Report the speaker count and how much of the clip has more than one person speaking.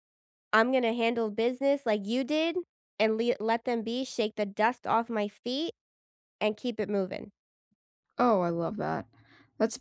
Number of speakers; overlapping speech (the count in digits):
2, no overlap